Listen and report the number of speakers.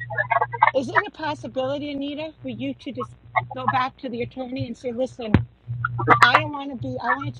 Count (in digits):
1